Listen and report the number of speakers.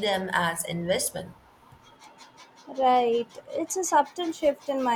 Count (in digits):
2